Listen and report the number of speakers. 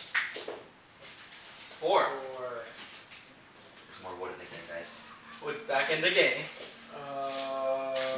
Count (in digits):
3